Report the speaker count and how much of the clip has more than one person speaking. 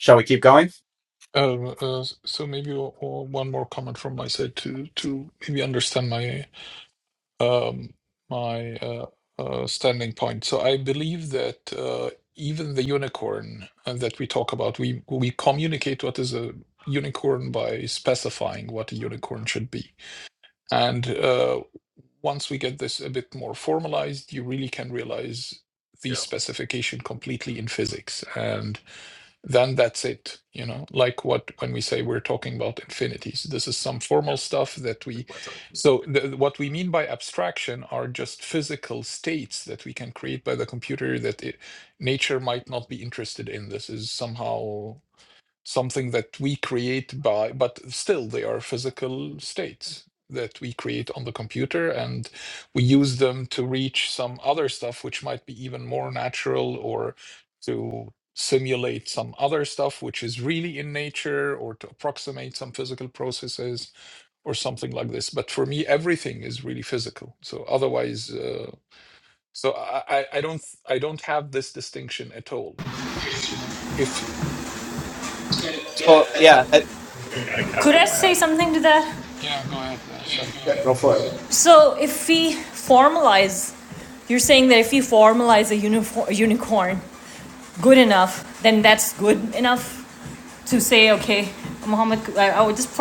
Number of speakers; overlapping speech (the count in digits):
3, under 1%